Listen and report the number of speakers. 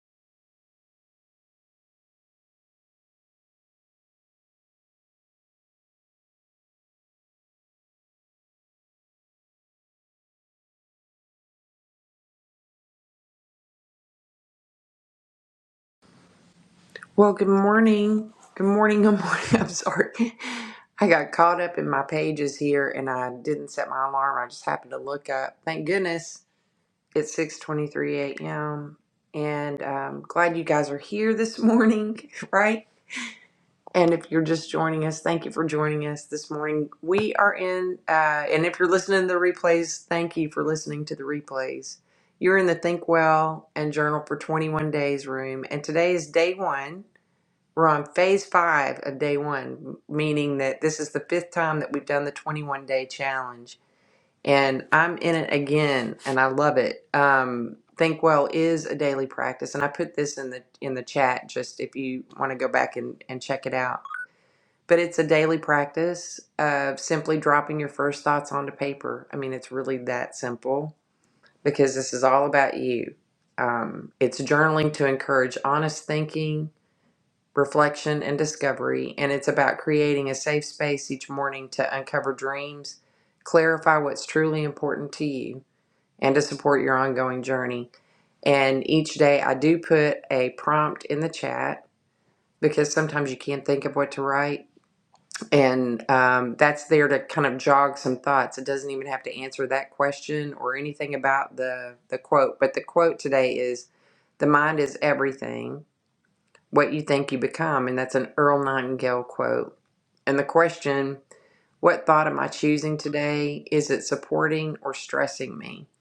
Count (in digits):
1